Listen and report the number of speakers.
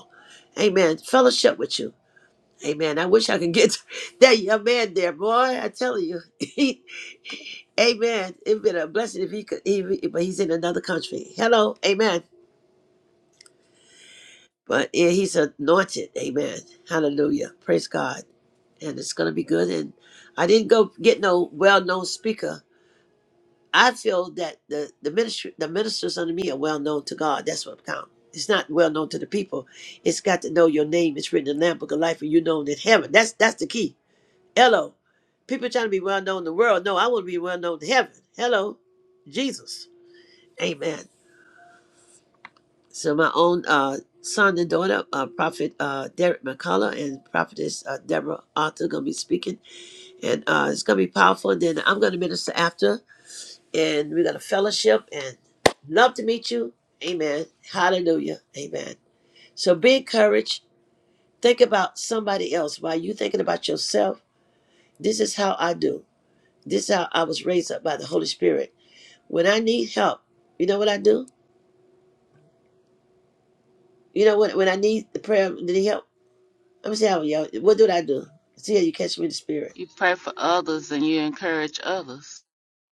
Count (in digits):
2